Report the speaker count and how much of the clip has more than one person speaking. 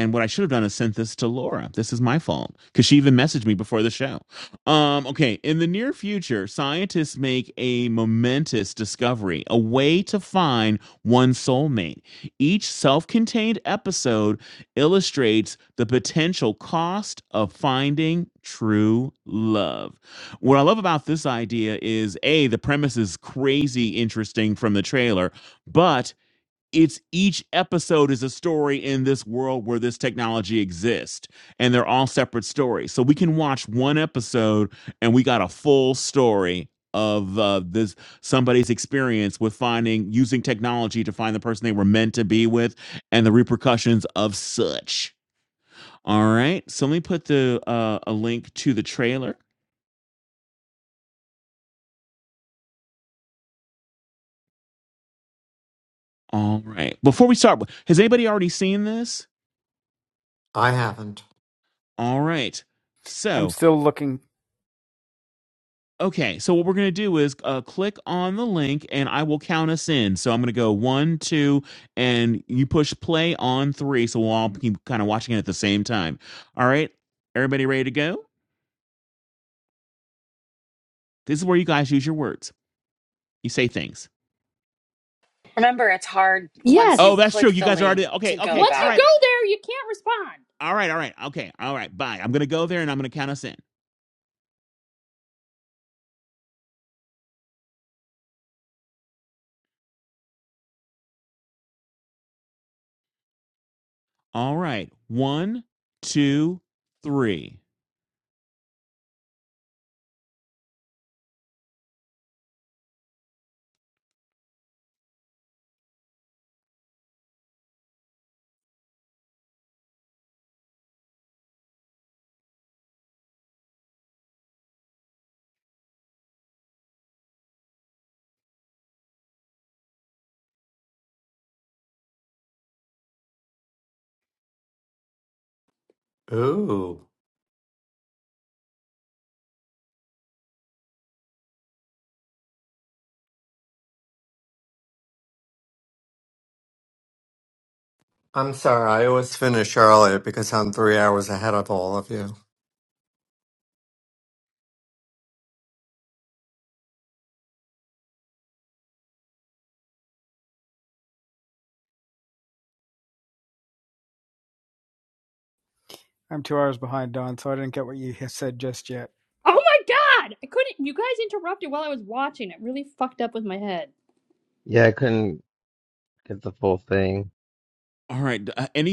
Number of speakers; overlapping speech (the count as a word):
six, about 1%